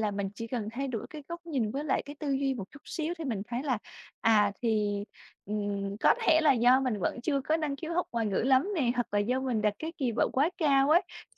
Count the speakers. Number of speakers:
one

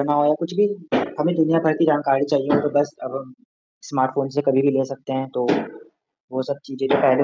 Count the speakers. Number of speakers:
one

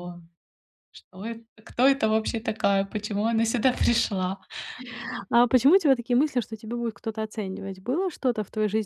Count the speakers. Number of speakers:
two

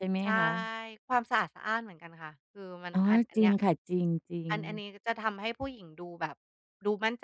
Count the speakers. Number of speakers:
two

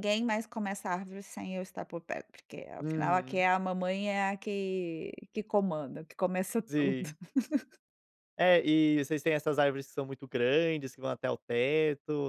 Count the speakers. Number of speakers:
two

